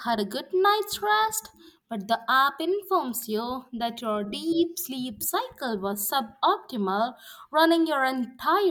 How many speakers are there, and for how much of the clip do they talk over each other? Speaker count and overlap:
1, no overlap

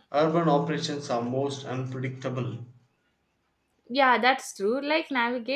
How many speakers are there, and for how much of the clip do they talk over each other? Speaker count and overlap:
2, no overlap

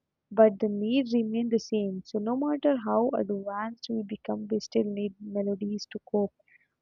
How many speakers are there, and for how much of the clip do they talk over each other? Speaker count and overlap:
1, no overlap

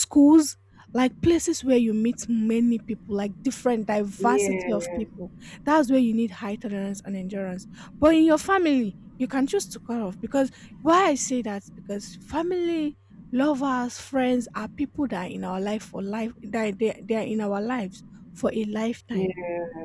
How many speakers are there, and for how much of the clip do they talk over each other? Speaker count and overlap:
2, about 5%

